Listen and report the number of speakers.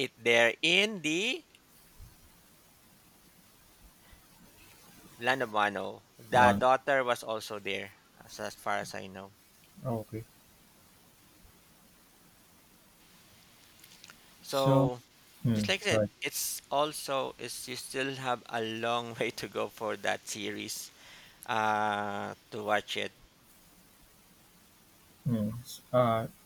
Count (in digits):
2